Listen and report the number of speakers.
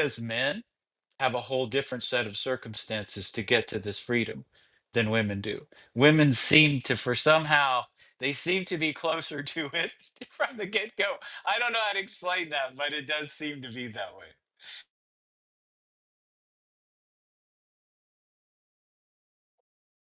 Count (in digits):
1